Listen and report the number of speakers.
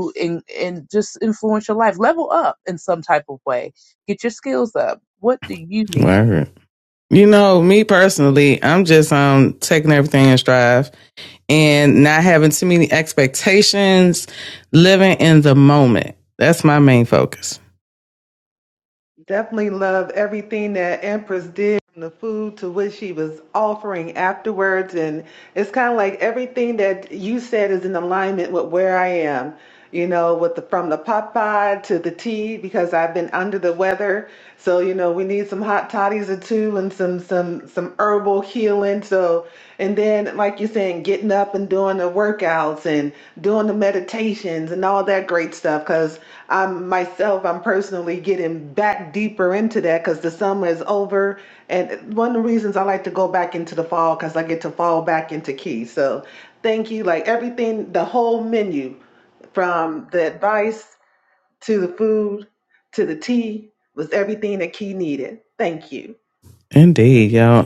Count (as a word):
three